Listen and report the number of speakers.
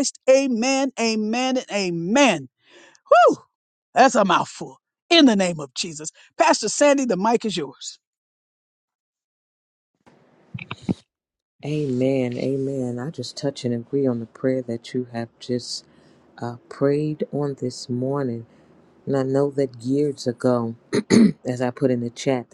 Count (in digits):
2